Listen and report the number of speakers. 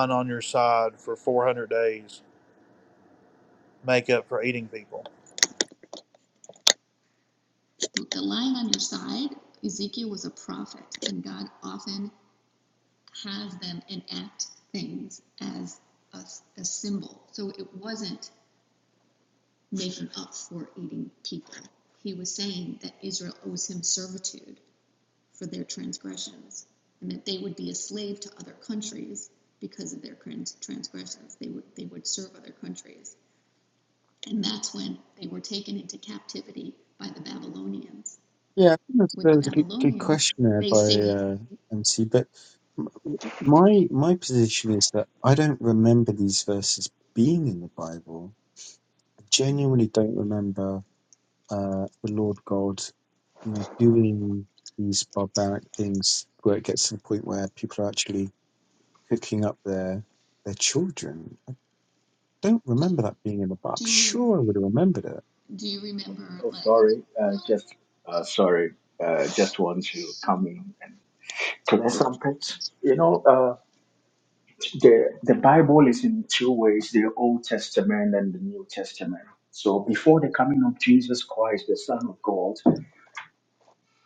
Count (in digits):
4